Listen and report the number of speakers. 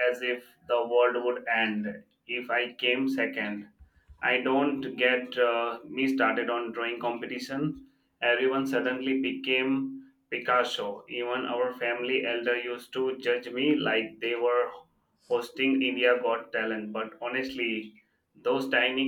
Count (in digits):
1